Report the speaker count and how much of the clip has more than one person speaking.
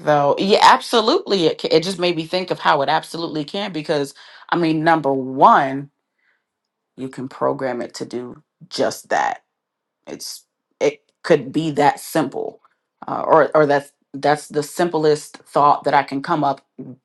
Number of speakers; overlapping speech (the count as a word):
one, no overlap